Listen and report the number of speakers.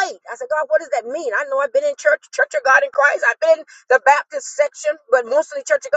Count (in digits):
1